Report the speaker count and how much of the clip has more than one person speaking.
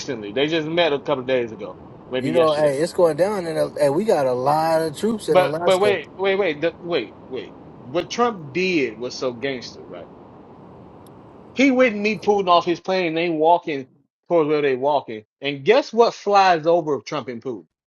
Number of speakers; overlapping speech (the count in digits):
2, about 6%